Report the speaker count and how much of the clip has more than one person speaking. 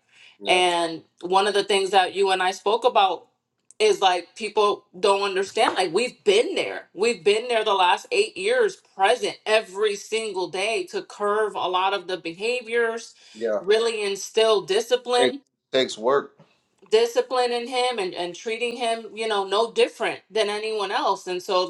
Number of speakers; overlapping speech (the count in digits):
2, about 1%